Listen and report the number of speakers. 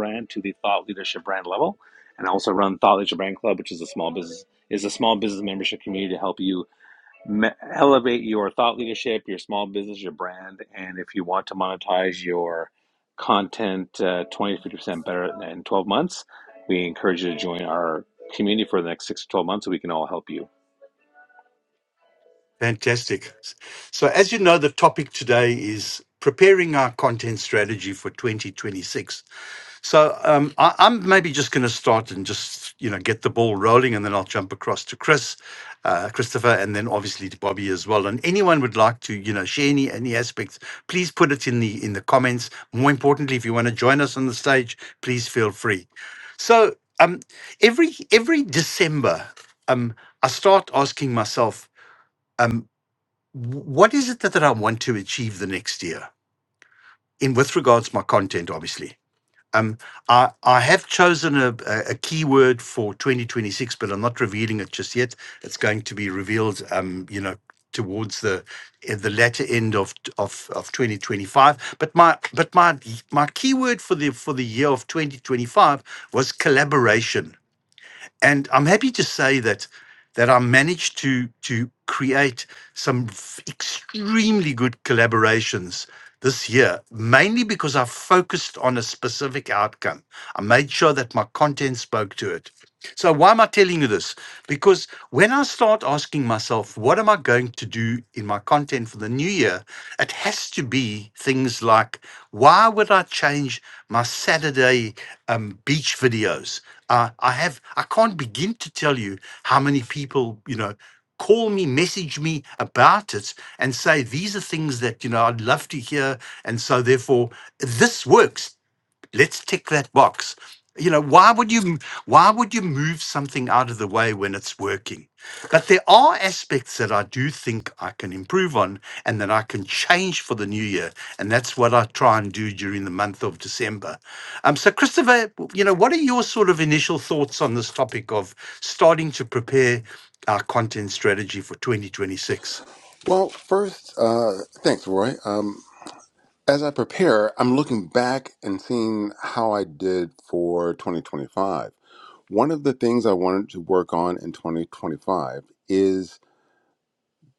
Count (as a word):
three